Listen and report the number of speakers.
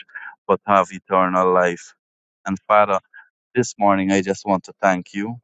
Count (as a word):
one